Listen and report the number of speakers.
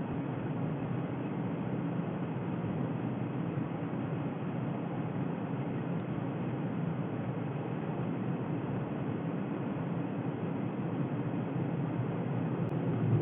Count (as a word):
zero